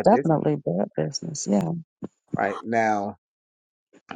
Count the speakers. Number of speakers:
two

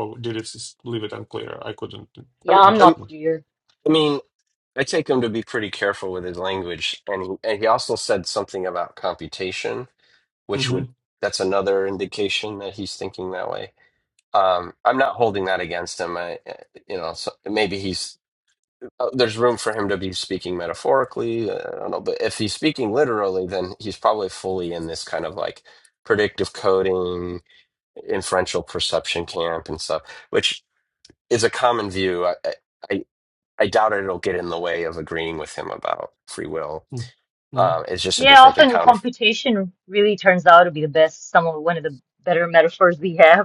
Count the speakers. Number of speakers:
three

